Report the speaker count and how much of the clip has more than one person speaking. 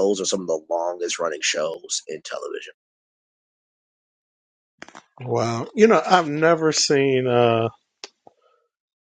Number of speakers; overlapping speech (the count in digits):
2, no overlap